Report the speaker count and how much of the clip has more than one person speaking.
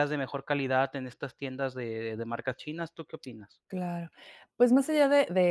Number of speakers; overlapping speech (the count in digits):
2, no overlap